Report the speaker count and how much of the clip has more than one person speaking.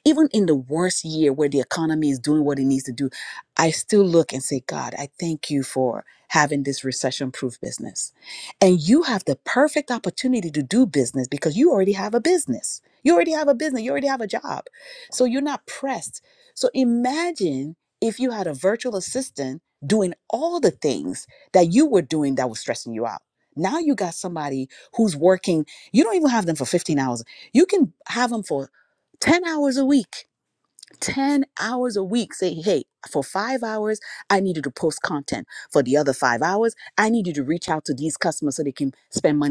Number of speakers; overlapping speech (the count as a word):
one, no overlap